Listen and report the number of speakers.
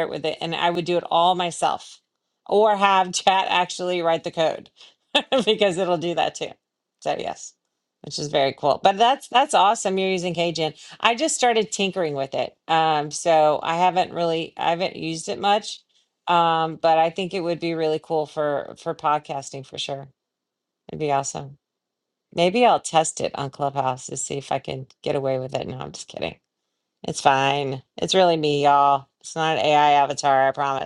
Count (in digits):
1